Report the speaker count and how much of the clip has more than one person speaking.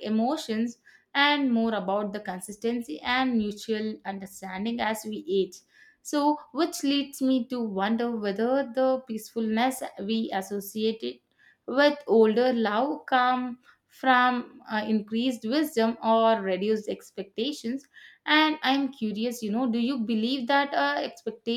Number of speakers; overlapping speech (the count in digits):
1, no overlap